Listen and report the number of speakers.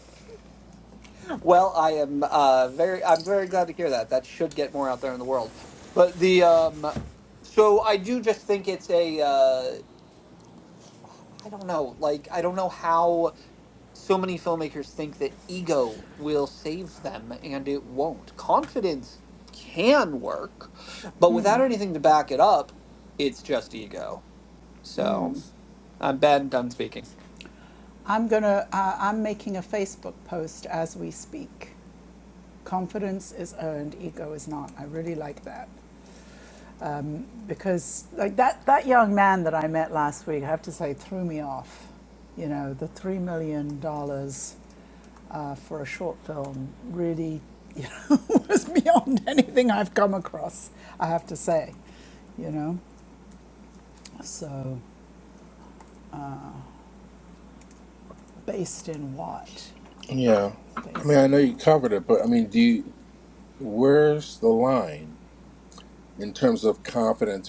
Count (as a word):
three